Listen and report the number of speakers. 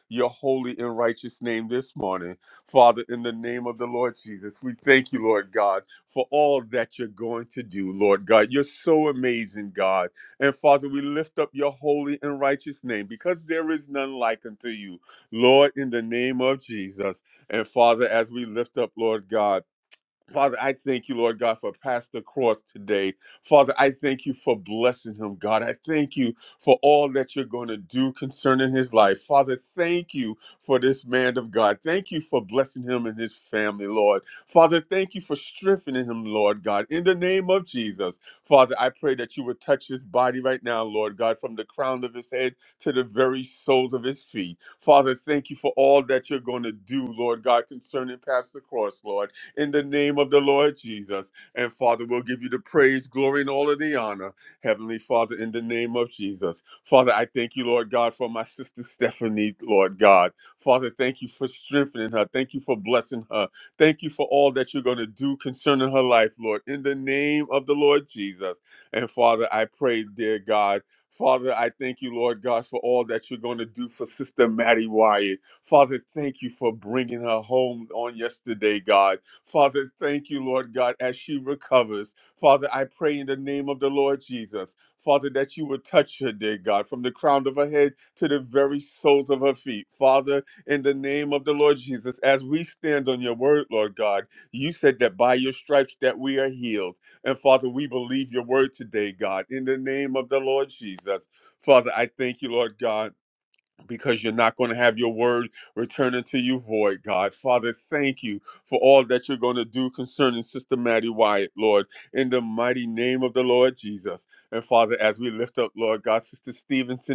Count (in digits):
1